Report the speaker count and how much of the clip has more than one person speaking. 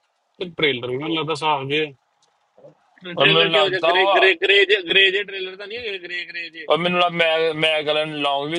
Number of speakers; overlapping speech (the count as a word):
three, about 11%